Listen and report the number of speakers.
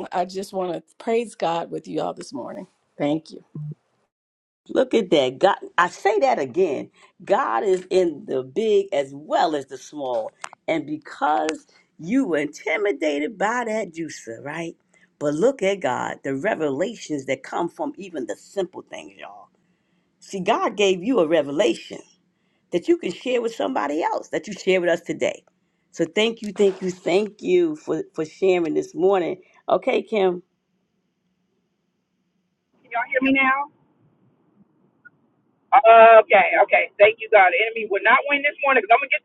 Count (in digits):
3